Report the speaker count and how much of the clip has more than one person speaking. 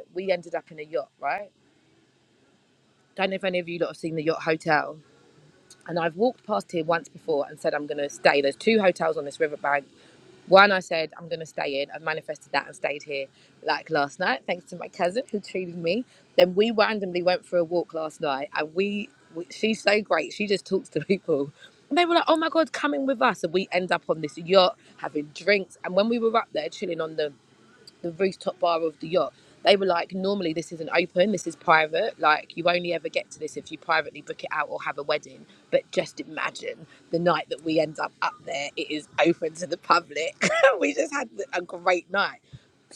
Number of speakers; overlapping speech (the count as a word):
one, no overlap